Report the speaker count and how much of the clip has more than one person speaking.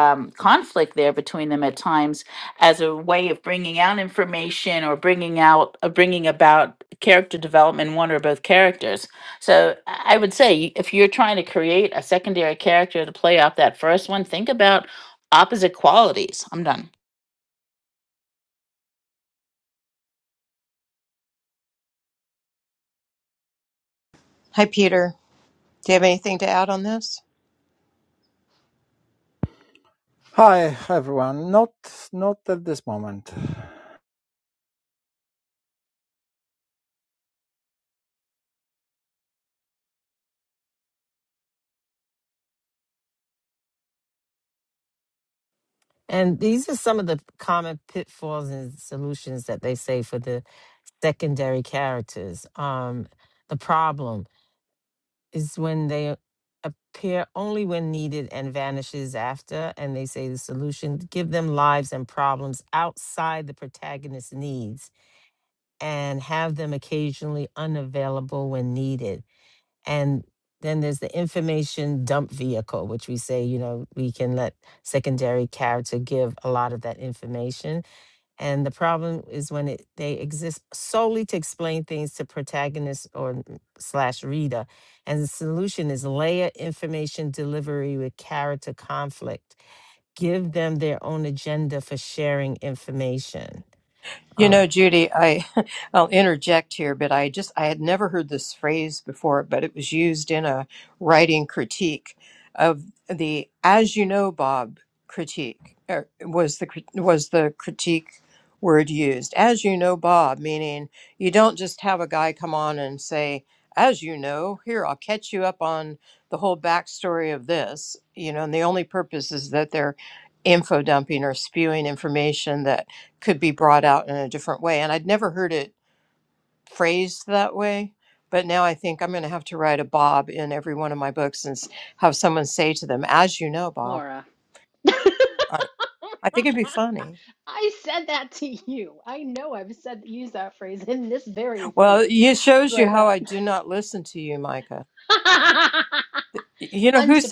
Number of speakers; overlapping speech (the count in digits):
5, about 1%